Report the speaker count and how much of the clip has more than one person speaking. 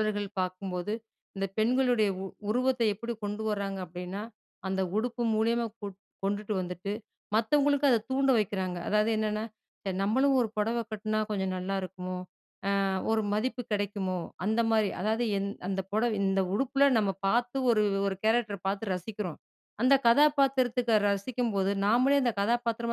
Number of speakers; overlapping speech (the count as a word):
one, no overlap